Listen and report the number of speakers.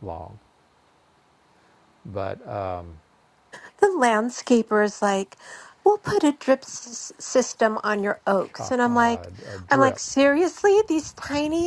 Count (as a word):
two